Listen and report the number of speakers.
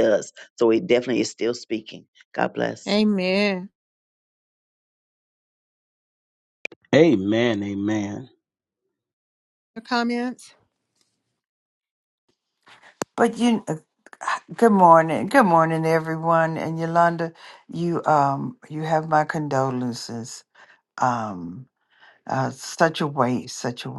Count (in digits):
4